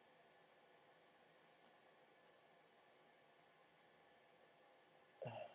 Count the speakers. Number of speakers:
0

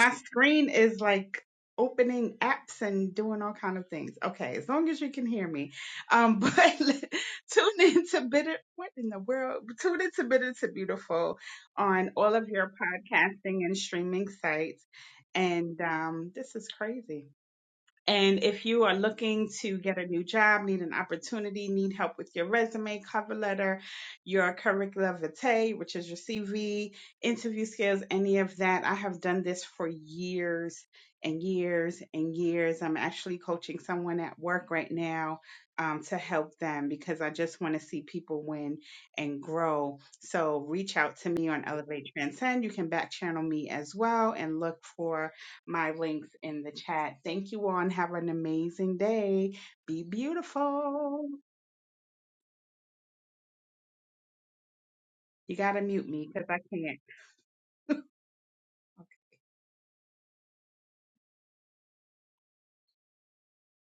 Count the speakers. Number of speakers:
1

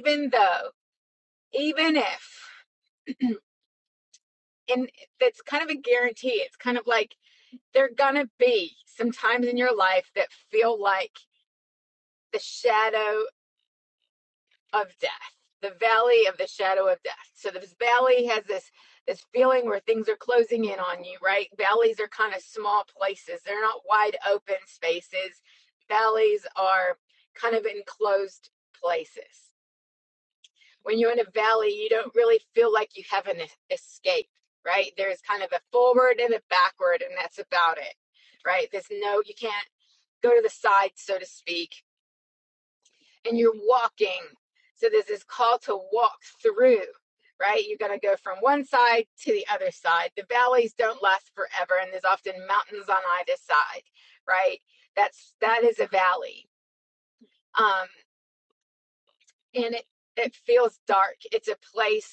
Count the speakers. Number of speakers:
1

